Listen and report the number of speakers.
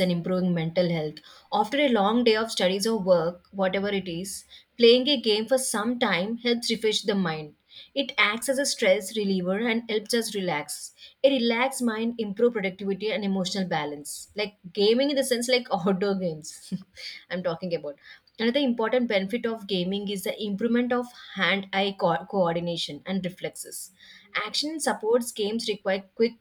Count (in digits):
1